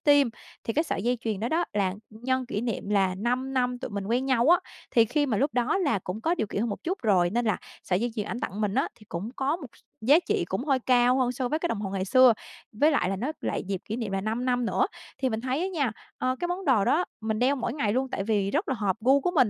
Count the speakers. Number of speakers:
1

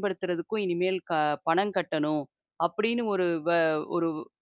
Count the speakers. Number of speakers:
1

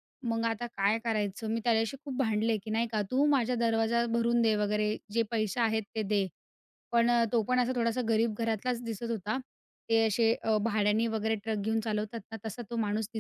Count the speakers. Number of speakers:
1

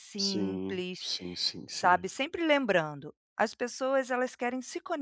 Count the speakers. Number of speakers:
2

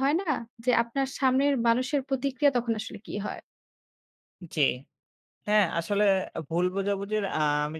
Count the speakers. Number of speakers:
2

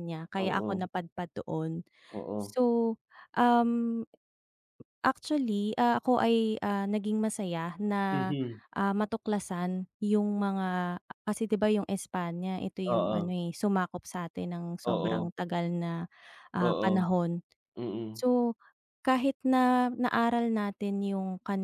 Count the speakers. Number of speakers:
2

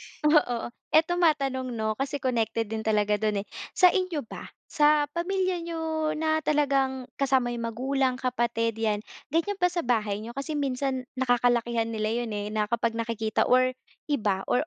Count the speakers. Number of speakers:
1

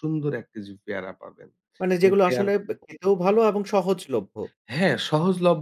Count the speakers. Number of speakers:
2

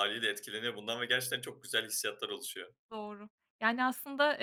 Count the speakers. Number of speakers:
2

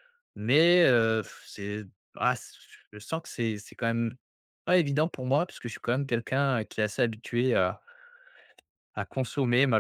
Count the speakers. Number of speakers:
1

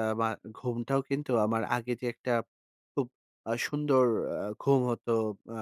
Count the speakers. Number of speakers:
1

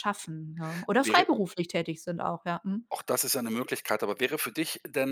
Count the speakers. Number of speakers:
2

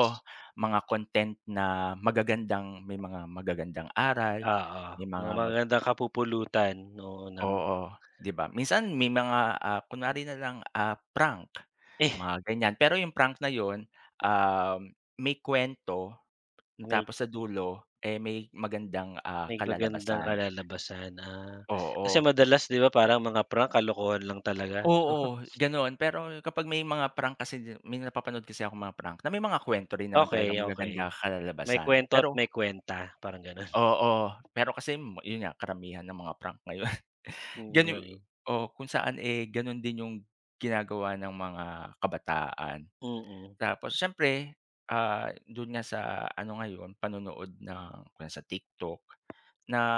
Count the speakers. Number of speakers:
2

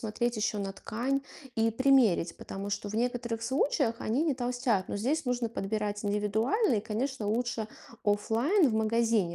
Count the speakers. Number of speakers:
1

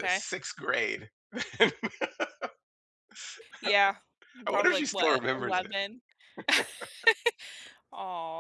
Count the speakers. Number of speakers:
2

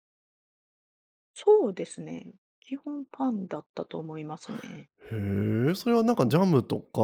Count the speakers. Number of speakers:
2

